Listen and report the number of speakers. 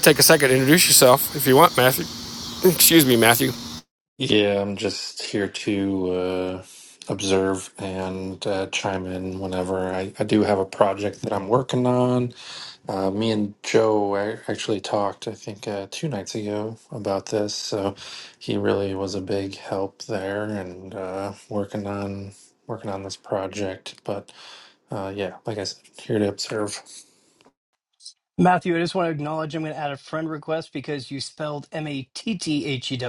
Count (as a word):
three